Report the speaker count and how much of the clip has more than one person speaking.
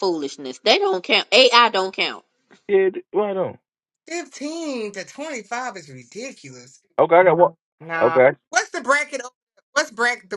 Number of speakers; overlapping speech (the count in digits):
3, about 2%